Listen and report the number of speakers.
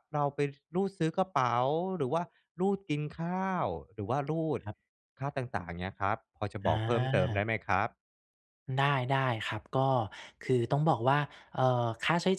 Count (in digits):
2